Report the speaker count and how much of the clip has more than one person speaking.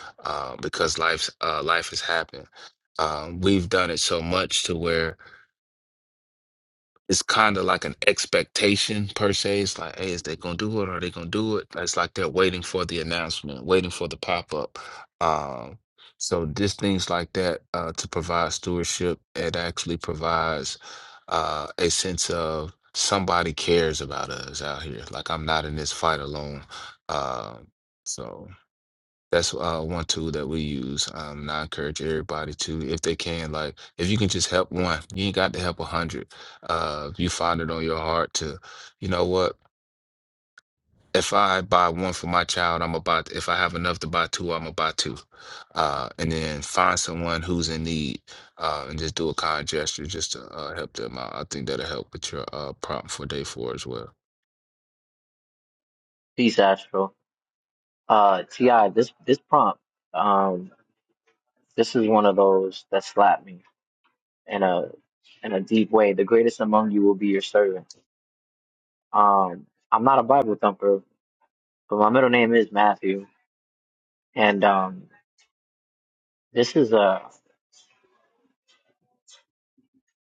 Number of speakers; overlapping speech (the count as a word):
two, no overlap